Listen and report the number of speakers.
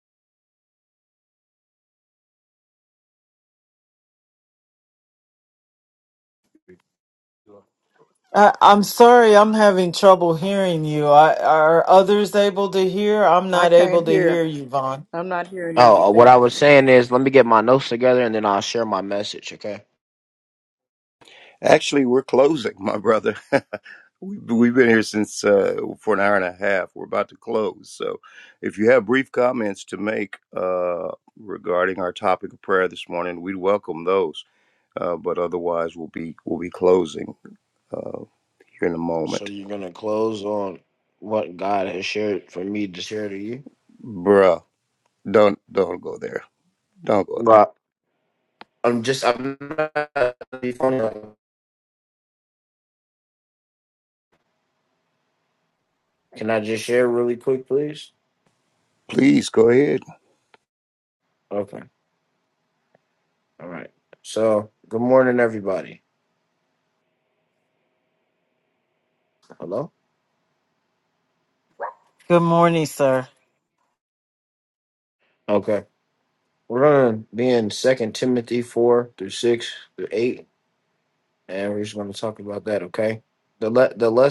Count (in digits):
4